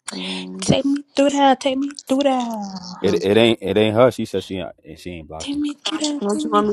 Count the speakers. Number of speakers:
3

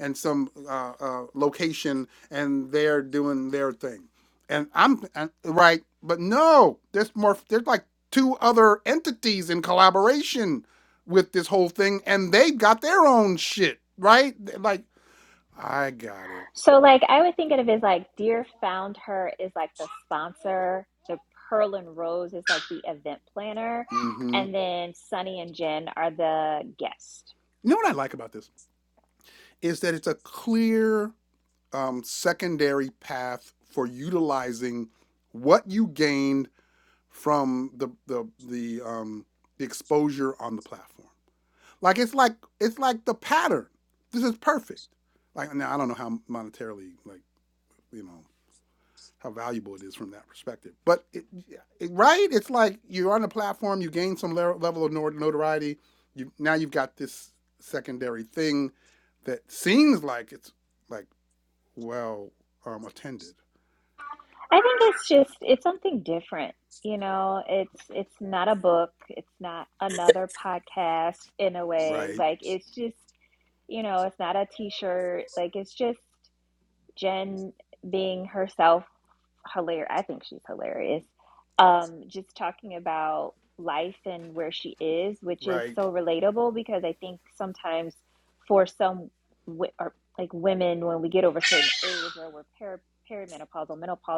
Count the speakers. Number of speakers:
2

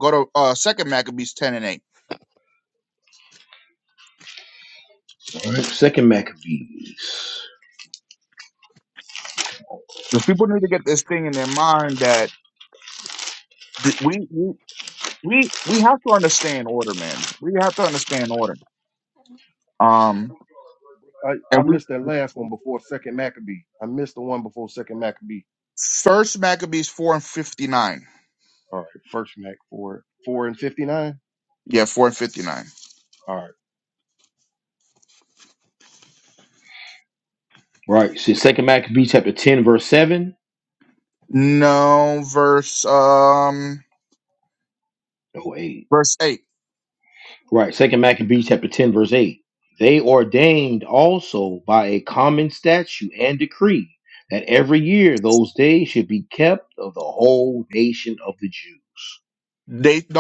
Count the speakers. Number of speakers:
3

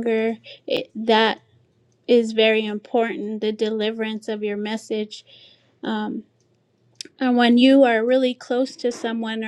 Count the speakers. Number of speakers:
1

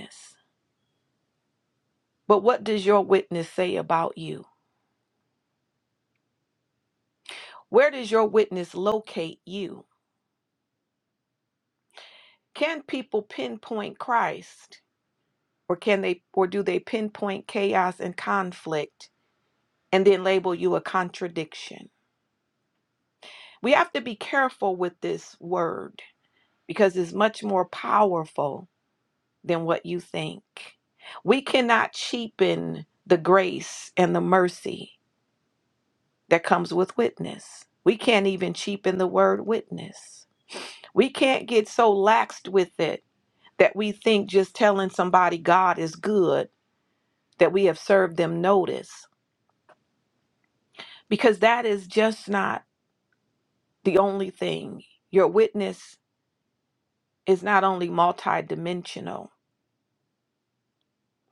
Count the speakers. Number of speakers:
1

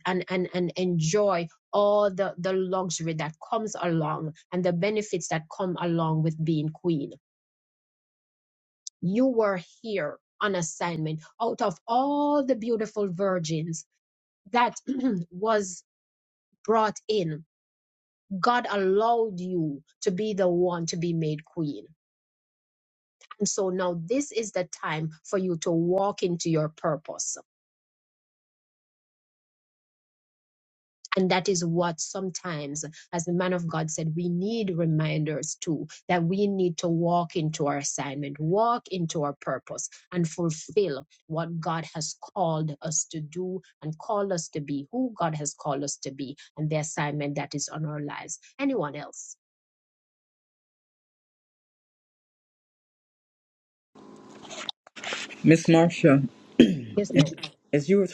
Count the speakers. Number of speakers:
2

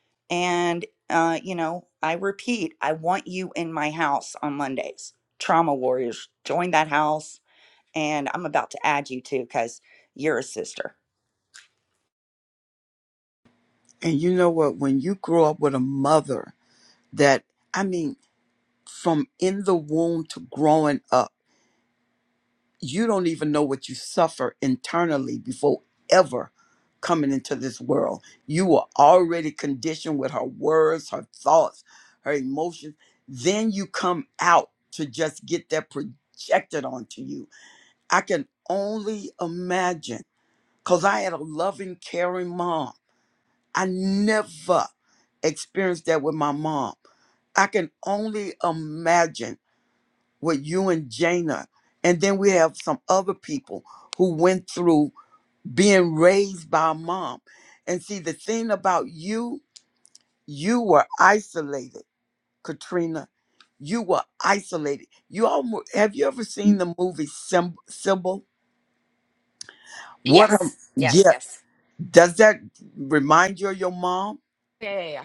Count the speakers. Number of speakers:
3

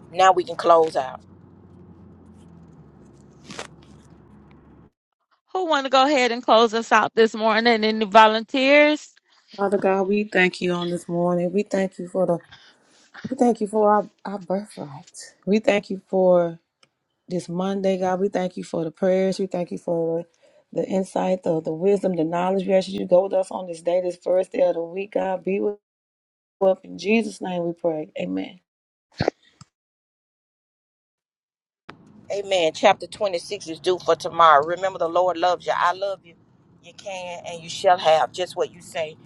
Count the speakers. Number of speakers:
3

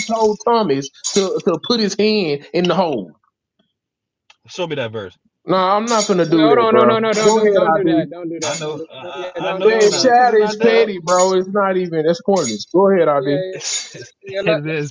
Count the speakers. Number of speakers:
3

